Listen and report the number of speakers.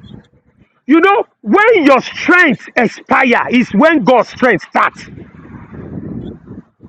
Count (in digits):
1